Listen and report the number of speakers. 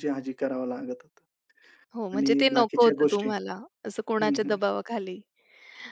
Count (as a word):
two